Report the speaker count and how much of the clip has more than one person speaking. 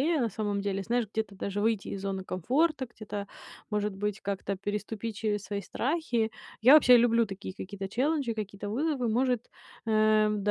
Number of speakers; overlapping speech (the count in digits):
1, no overlap